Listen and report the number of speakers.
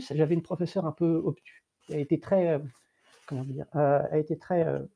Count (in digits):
1